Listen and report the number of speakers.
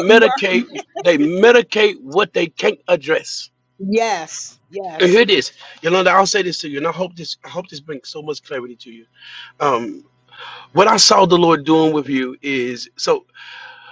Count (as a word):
two